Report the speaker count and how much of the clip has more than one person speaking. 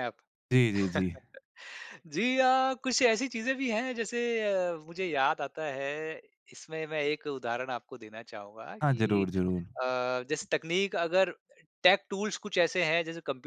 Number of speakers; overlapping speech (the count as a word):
two, about 3%